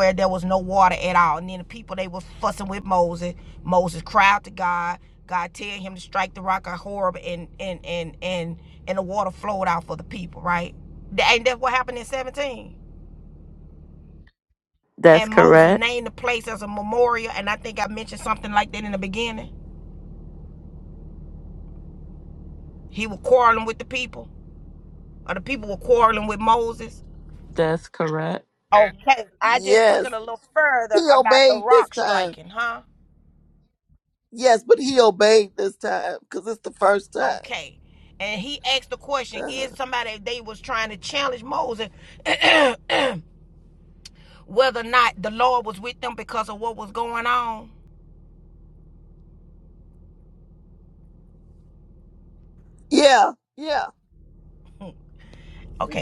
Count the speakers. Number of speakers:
3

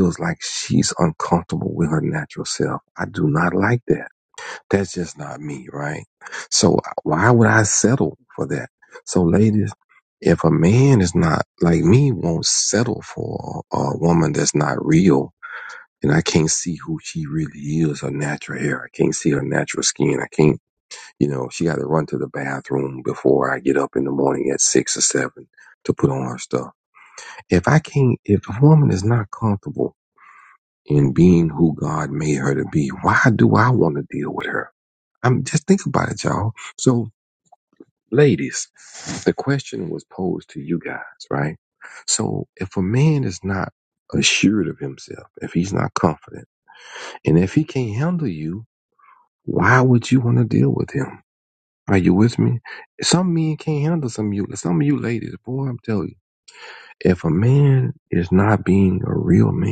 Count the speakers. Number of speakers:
1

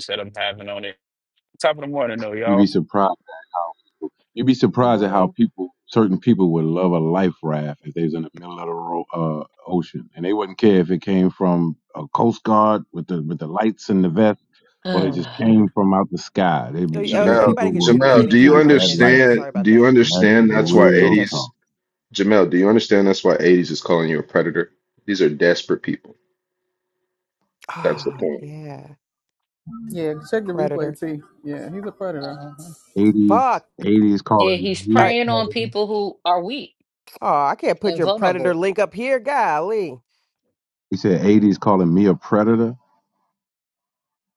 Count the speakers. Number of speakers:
6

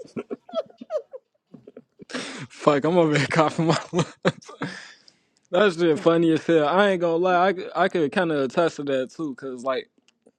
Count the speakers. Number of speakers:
1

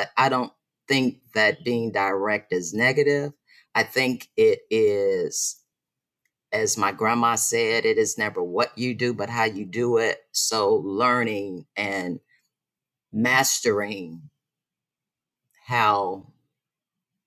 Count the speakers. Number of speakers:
1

